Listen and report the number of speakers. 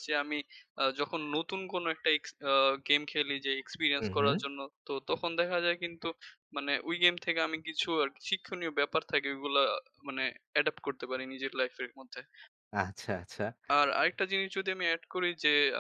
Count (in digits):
2